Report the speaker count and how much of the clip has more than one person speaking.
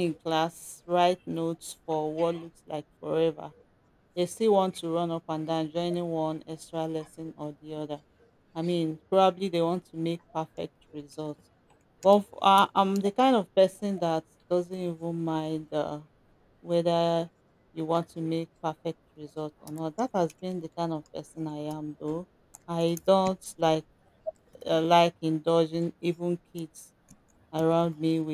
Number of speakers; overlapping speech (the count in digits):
1, no overlap